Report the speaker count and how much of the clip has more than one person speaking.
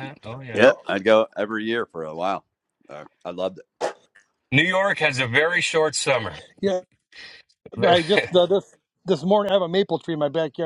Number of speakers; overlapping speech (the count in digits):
3, about 7%